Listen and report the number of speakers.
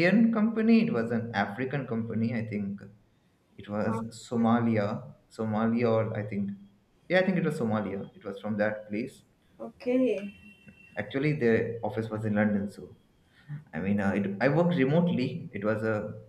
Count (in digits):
2